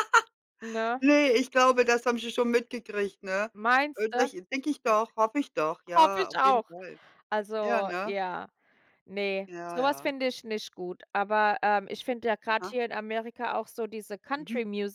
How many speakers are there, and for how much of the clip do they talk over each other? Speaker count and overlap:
2, about 17%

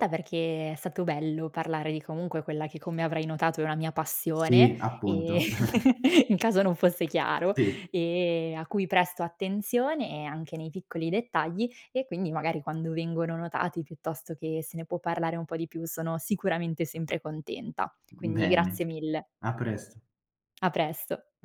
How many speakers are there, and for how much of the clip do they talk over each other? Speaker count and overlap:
2, about 8%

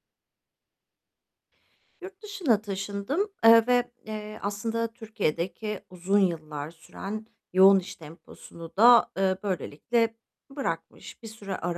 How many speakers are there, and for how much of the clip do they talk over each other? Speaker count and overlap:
1, no overlap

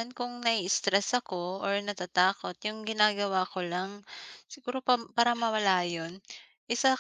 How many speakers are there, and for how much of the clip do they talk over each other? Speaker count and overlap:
1, no overlap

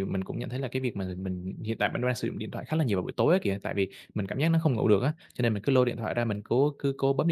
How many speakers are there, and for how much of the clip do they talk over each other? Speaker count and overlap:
1, no overlap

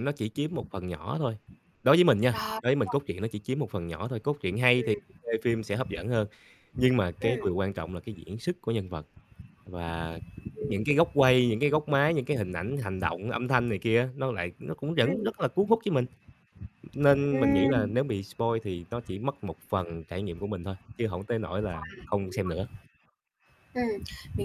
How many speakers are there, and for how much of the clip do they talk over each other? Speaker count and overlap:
2, about 8%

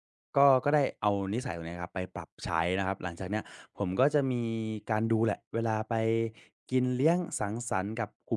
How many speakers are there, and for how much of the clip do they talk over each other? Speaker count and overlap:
1, no overlap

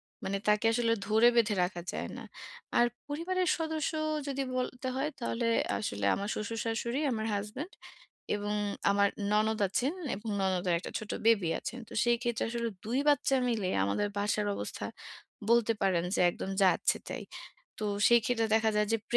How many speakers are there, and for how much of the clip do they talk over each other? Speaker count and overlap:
1, no overlap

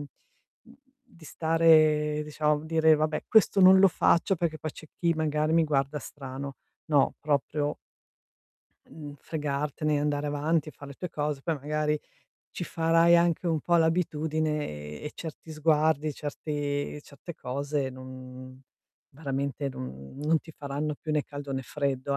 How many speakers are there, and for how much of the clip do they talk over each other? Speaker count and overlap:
1, no overlap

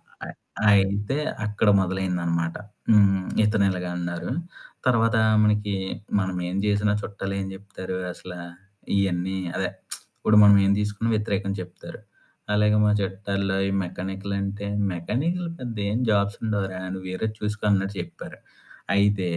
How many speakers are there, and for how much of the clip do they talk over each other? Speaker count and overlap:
1, no overlap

